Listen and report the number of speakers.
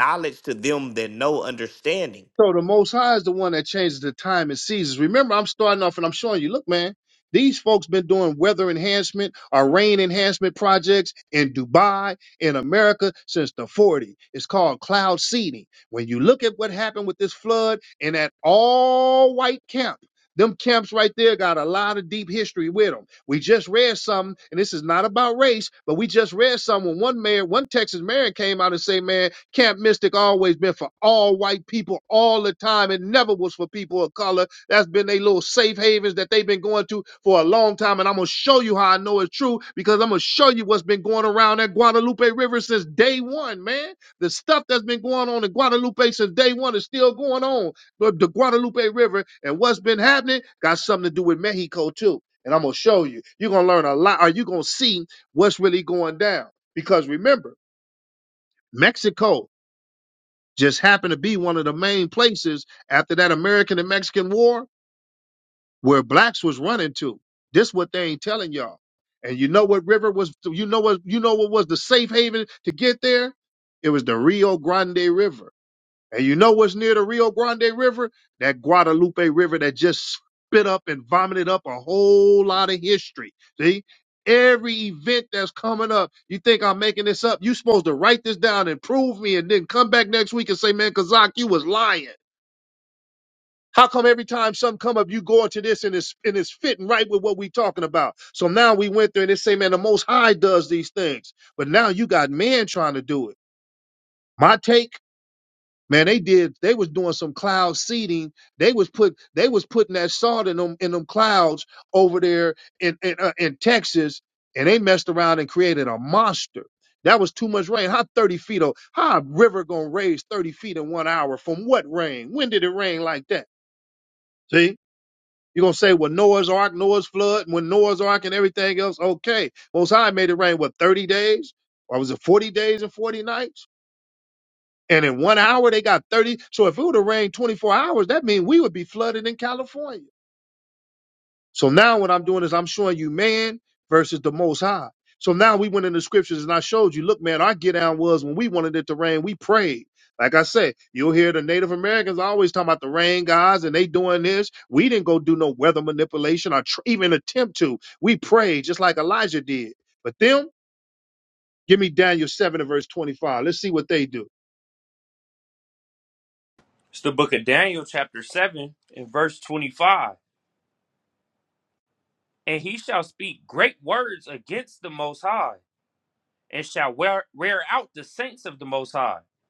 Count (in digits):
3